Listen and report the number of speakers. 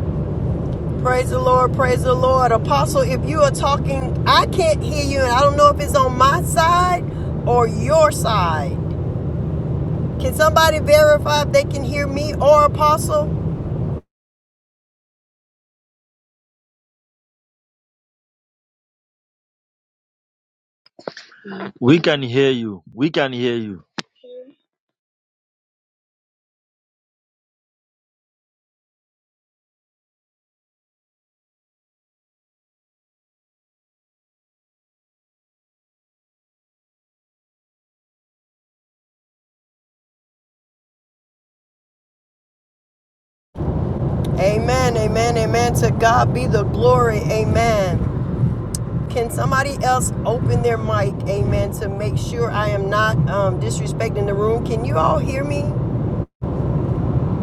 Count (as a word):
two